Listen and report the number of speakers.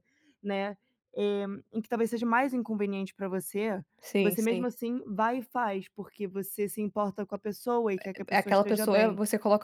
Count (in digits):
2